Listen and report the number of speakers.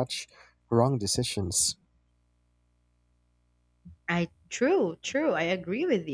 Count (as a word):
two